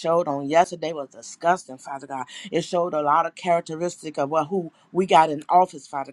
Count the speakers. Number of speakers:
1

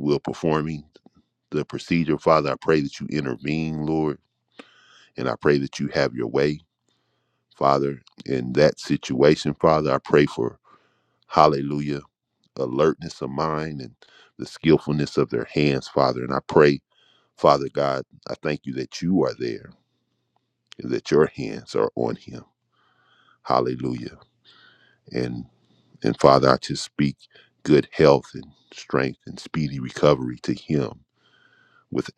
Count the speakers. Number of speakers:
1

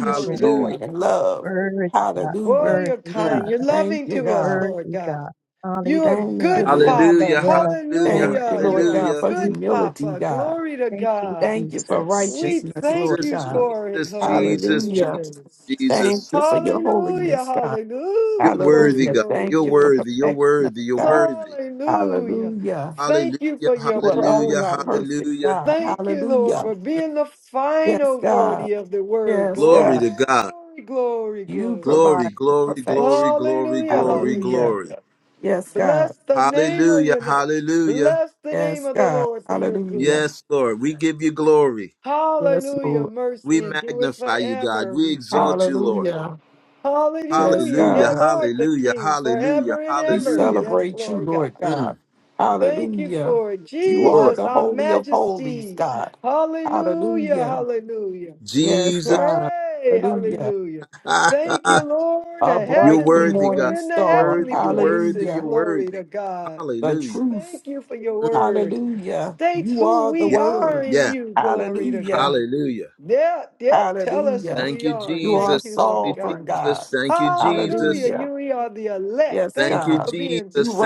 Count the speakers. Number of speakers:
4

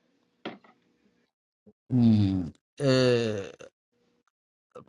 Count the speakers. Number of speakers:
1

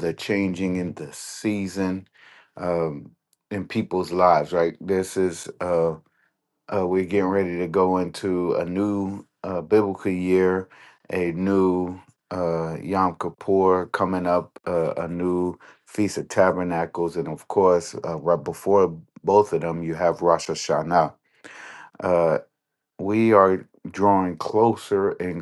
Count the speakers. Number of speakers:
1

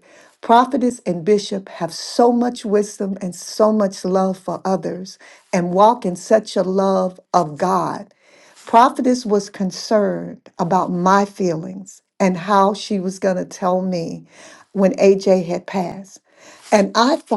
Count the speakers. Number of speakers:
1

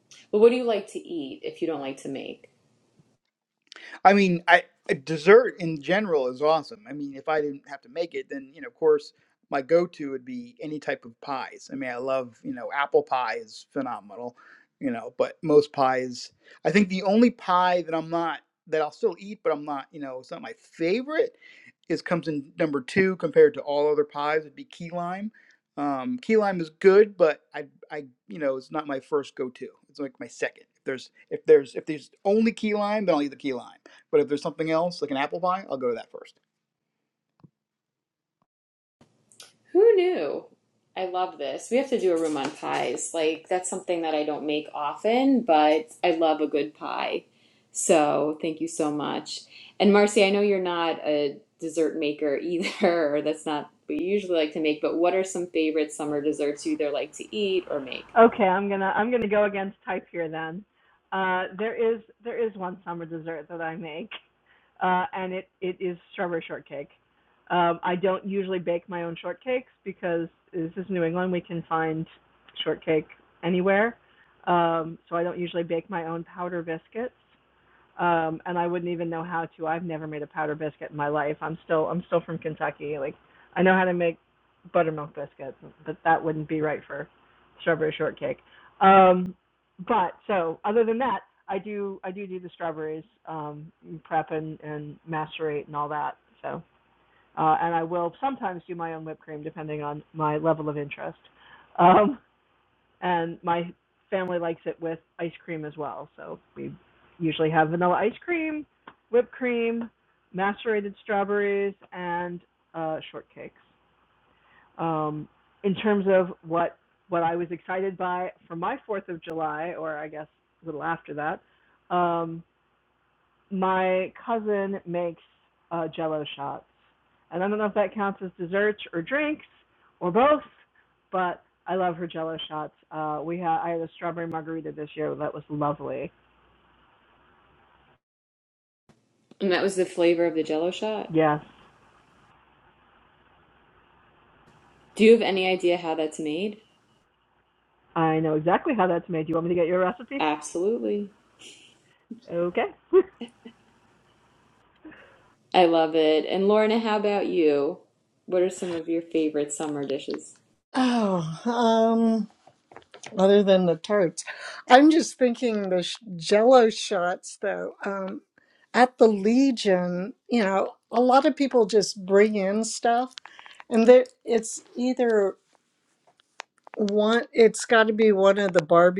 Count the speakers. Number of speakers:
4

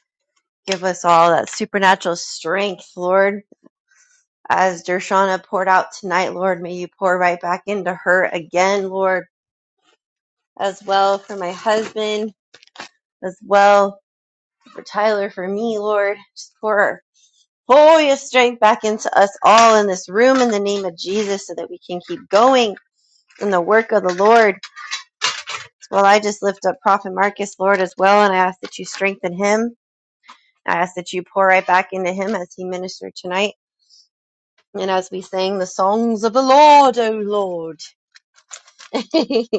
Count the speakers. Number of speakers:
1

